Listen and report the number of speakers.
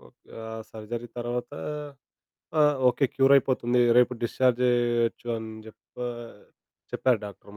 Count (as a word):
one